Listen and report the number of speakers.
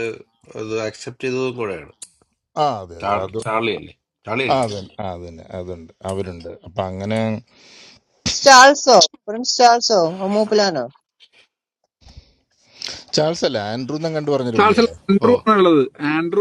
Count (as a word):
four